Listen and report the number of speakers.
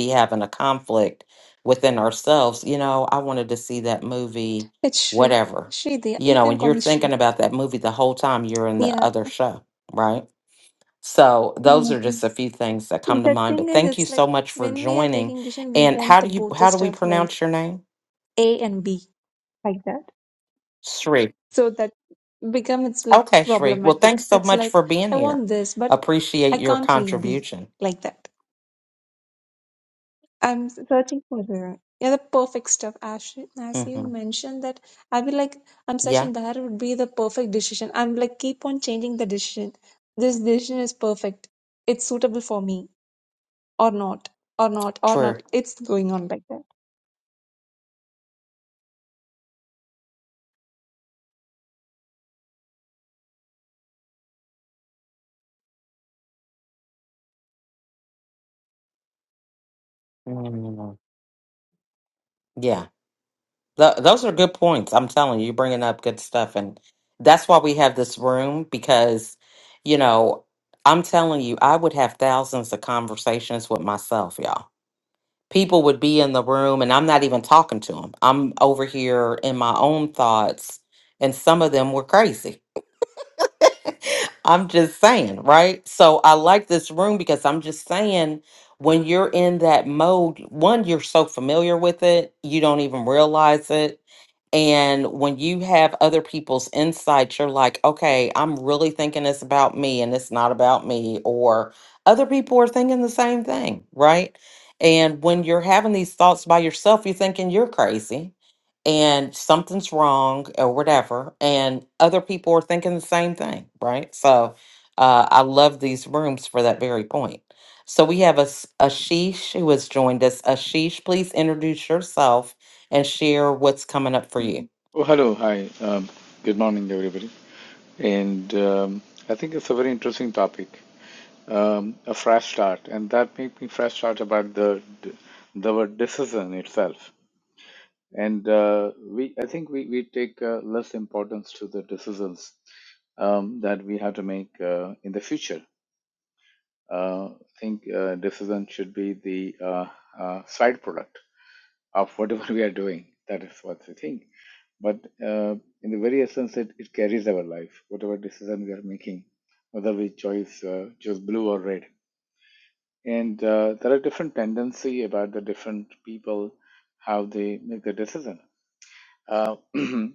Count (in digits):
3